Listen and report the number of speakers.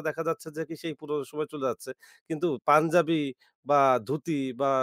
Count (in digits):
1